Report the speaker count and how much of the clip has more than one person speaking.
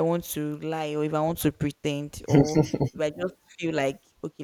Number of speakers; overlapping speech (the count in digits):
1, no overlap